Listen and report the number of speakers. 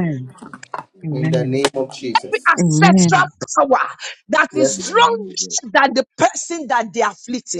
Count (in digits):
3